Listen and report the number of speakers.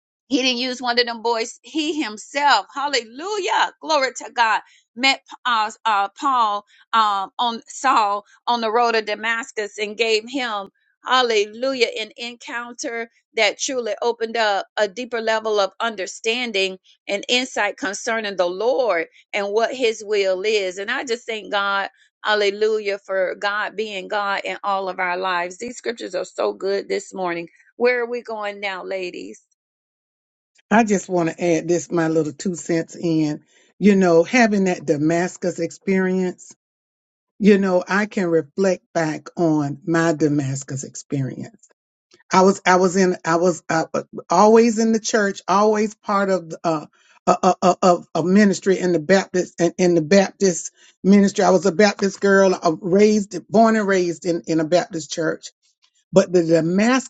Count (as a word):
two